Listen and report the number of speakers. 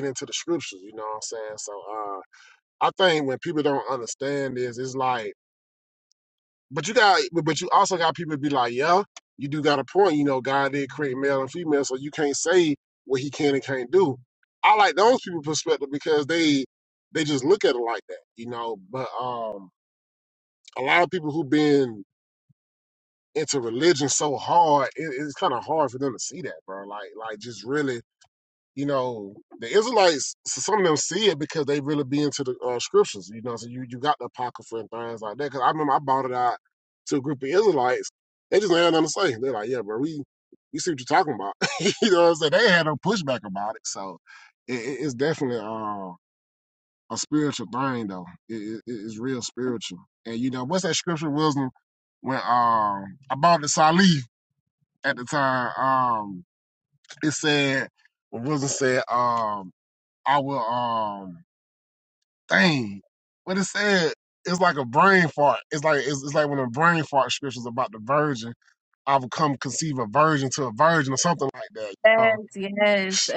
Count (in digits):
2